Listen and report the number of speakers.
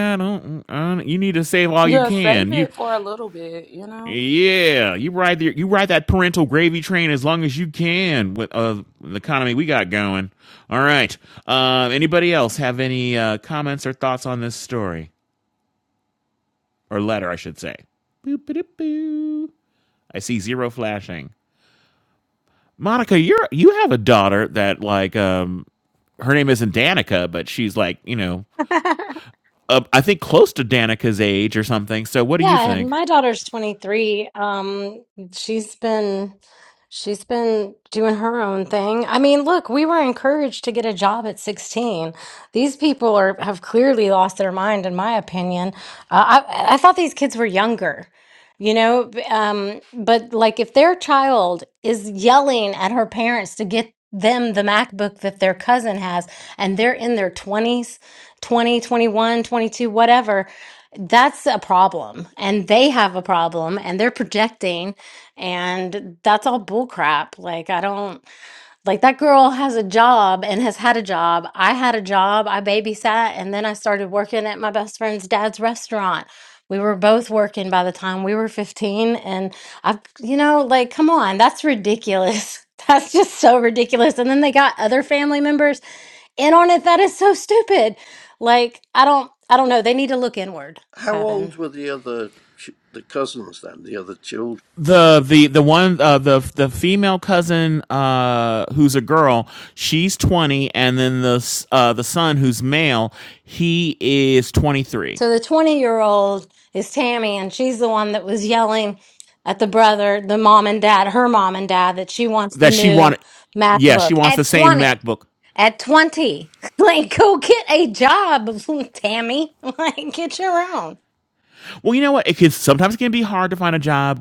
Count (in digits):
4